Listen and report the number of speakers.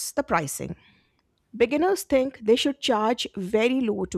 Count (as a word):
one